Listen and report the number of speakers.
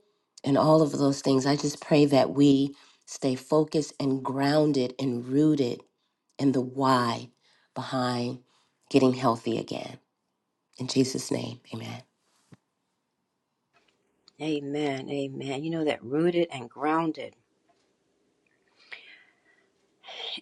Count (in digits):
2